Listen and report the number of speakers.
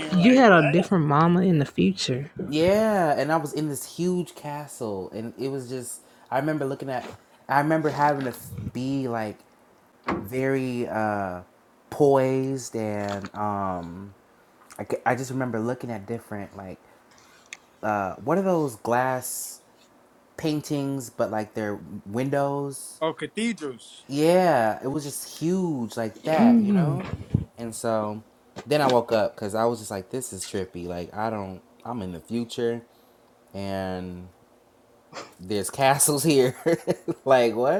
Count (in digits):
3